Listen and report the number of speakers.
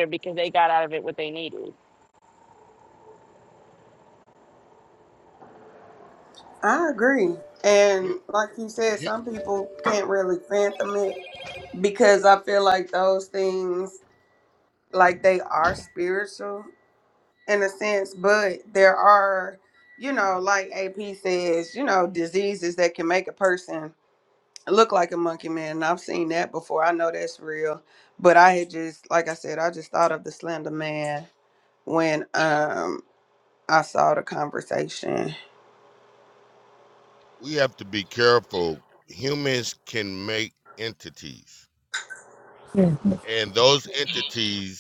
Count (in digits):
3